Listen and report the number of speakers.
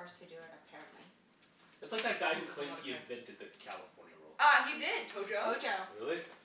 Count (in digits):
3